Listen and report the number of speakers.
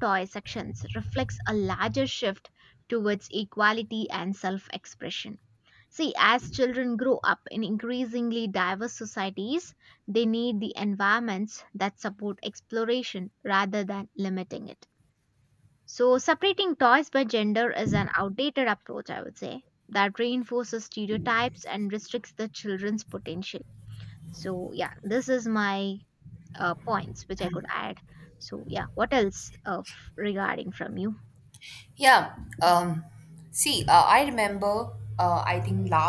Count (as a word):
two